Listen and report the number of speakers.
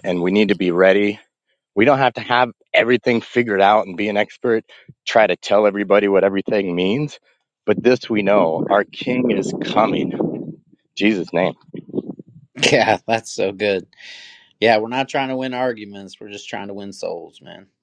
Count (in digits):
2